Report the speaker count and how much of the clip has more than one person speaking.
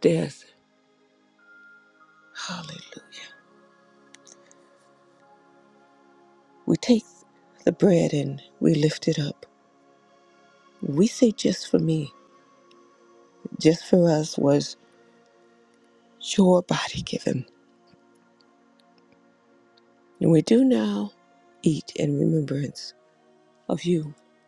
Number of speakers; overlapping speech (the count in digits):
1, no overlap